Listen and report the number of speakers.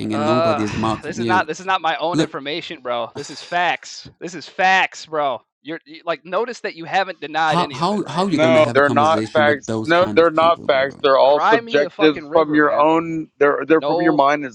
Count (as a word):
three